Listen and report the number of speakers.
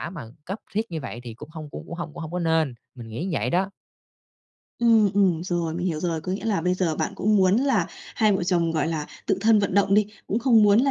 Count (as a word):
two